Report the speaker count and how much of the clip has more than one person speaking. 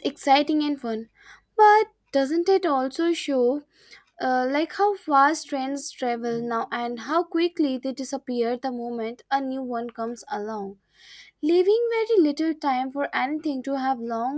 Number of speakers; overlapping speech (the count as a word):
one, no overlap